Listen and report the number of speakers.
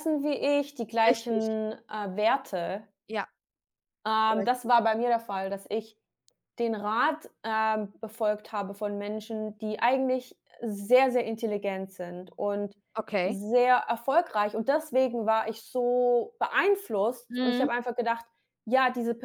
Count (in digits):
2